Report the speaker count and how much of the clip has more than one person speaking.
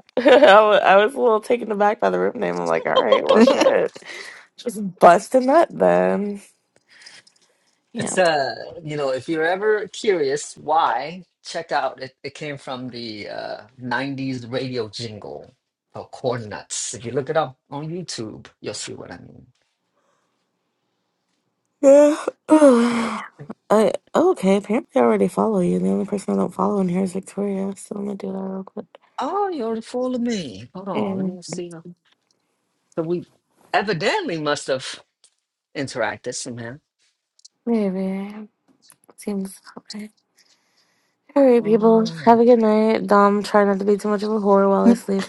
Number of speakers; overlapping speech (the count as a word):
two, about 3%